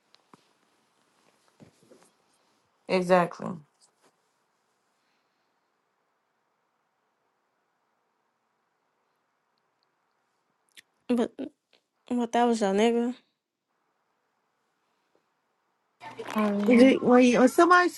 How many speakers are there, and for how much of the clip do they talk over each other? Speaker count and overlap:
3, about 2%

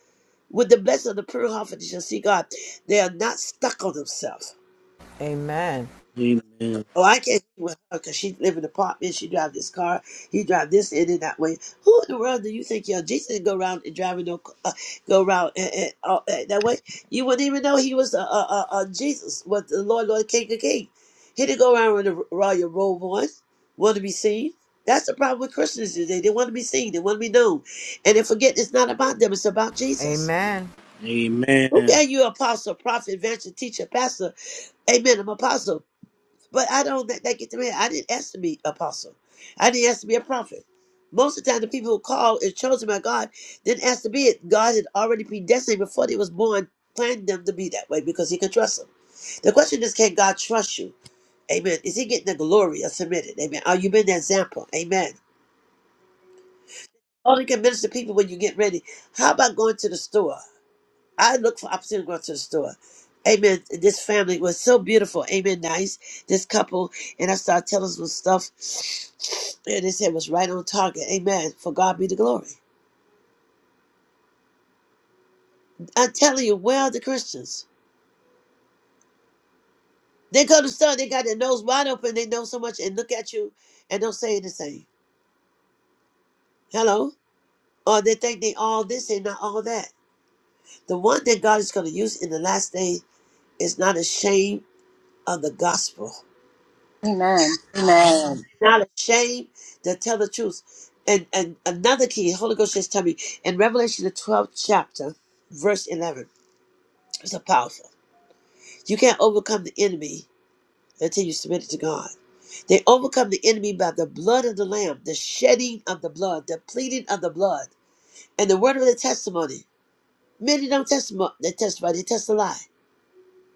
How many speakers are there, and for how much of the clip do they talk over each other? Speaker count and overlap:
4, under 1%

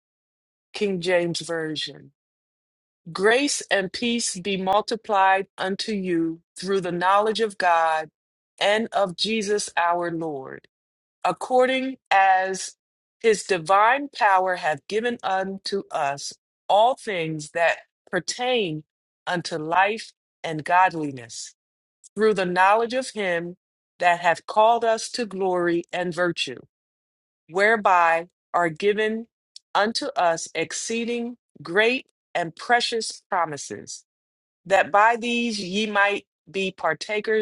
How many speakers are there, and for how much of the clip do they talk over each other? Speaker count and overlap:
1, no overlap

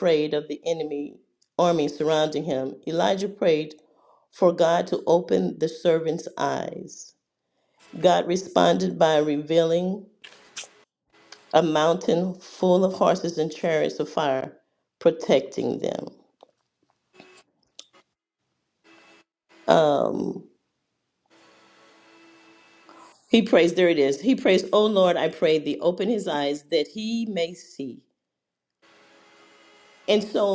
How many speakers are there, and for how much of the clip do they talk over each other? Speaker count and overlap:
1, no overlap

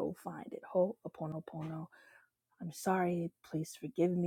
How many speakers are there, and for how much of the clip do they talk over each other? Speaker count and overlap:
1, no overlap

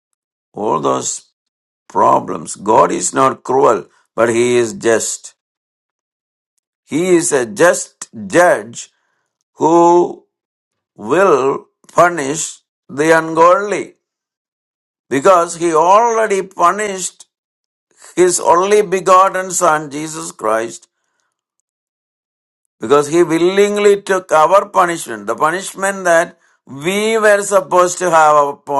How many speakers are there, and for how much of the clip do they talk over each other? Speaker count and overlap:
1, no overlap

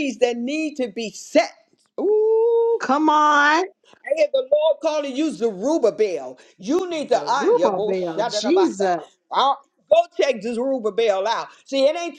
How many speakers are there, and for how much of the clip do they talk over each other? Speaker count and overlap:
2, about 13%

